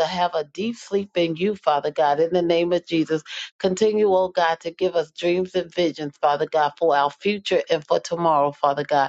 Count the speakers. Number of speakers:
1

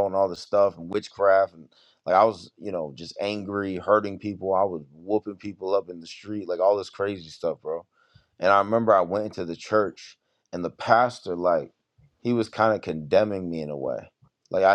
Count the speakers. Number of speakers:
1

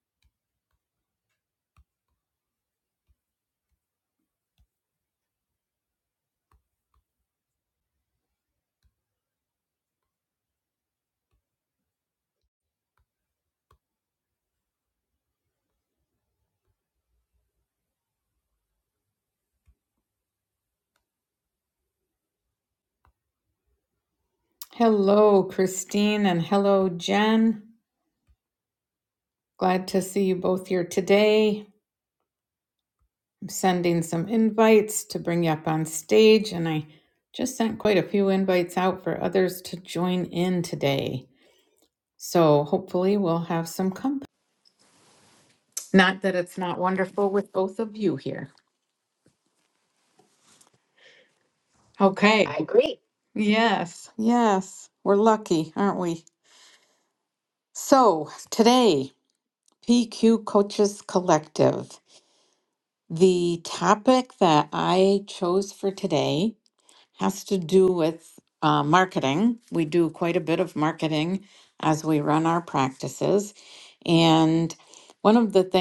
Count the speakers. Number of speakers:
1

